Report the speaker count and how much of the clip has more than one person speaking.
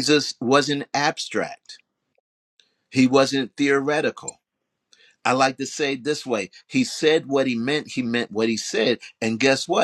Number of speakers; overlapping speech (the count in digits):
1, no overlap